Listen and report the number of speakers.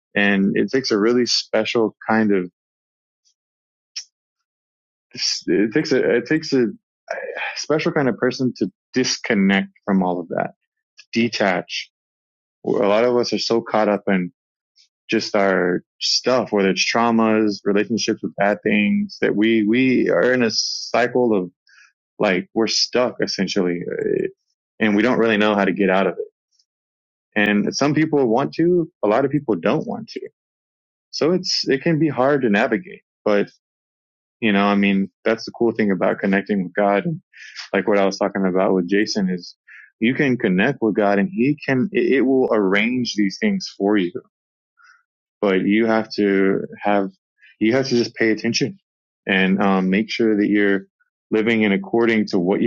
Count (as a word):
one